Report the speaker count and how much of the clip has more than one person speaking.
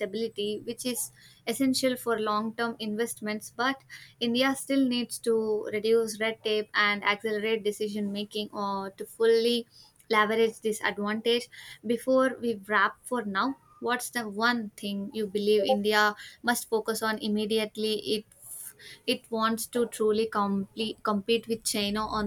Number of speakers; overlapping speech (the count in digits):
1, no overlap